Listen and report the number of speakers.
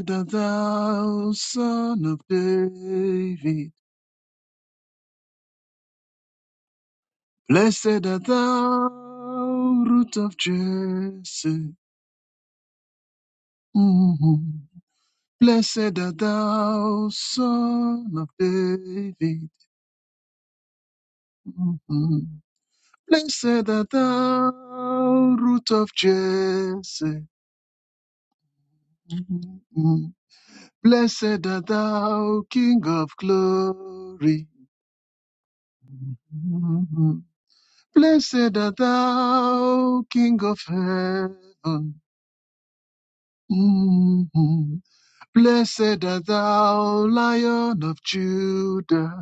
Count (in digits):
1